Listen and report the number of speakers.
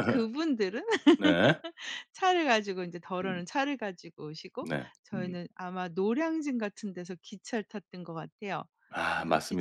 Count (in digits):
2